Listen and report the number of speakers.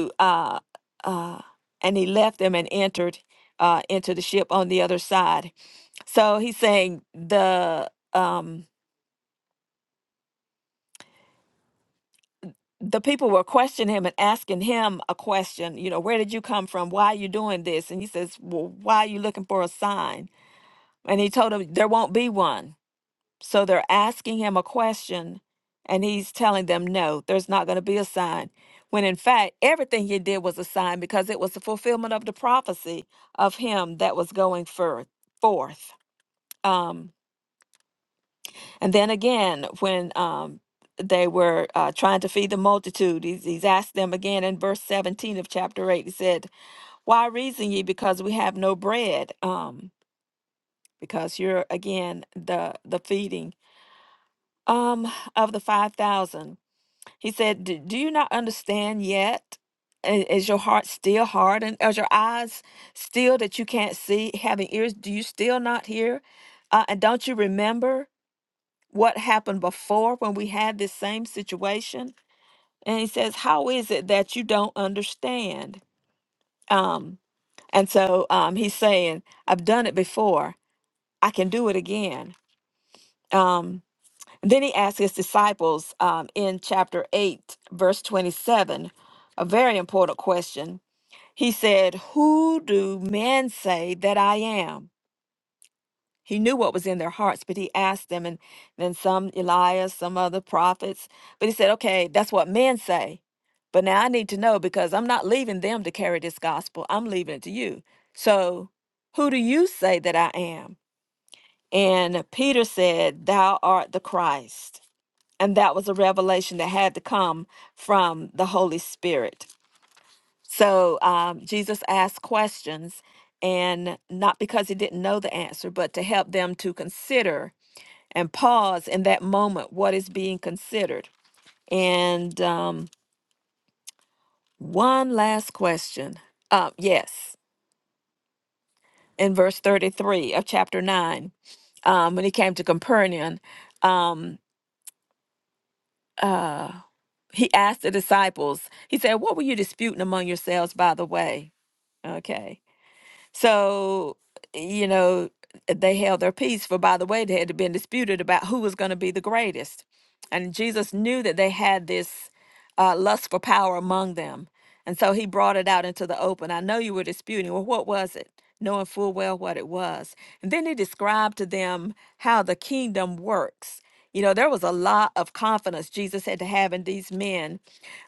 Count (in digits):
1